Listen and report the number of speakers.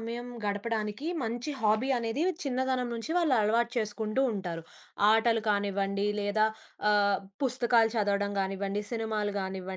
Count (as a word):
one